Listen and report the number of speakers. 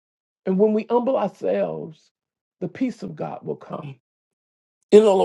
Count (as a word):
one